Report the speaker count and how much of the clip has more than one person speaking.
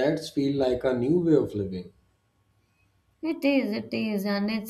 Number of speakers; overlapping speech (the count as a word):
two, no overlap